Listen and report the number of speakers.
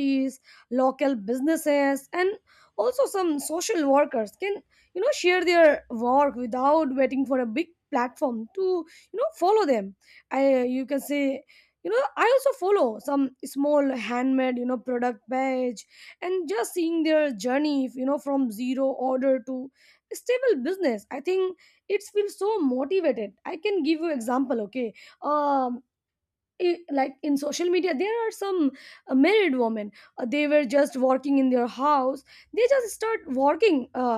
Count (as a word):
one